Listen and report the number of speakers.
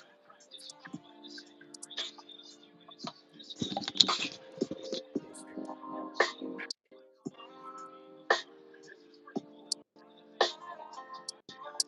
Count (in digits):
0